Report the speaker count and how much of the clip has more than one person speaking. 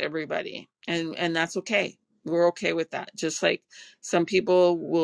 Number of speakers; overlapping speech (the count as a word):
one, no overlap